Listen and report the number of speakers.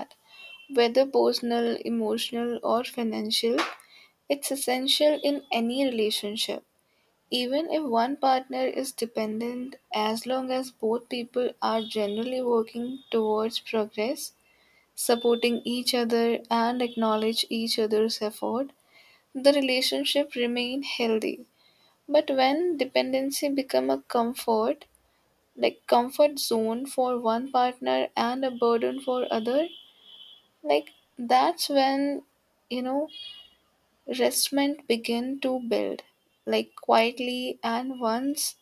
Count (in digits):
1